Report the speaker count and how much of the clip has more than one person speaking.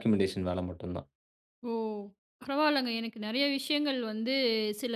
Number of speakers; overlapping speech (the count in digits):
2, no overlap